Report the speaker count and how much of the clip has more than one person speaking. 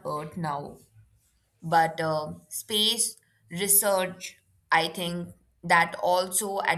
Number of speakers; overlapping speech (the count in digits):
1, no overlap